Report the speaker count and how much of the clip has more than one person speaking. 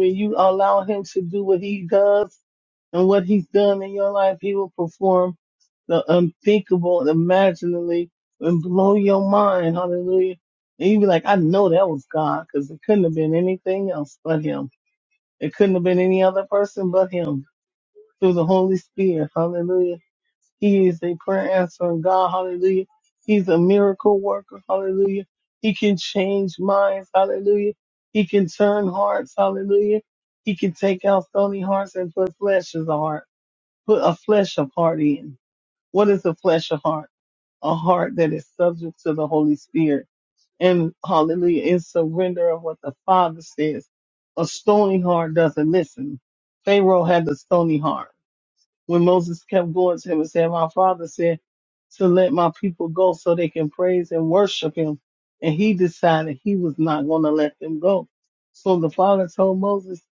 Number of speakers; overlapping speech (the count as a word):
one, no overlap